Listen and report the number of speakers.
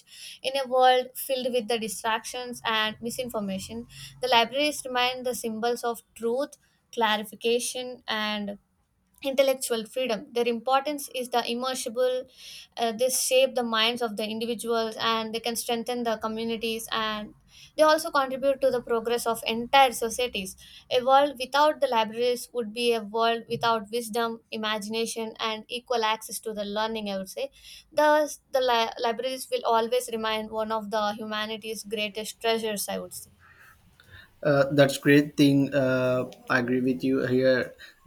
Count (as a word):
two